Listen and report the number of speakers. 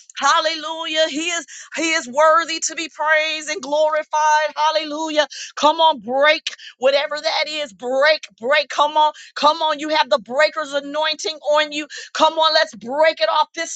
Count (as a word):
one